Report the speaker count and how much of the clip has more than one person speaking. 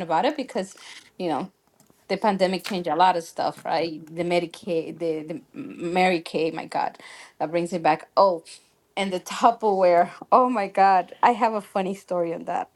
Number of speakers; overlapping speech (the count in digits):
1, no overlap